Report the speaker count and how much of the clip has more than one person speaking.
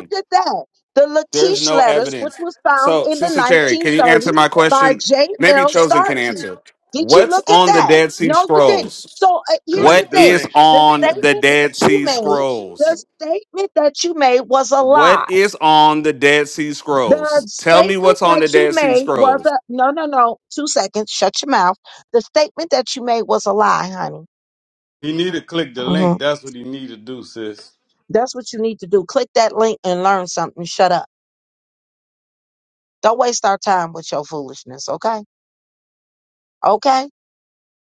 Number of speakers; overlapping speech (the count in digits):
3, about 31%